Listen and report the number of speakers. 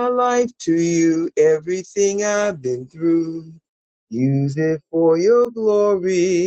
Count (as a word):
one